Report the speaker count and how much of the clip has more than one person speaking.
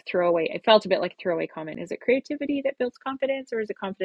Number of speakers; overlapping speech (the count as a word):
one, no overlap